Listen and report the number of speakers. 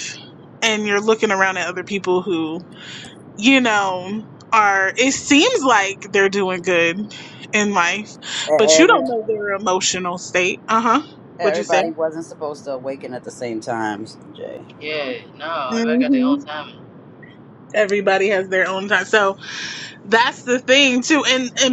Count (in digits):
3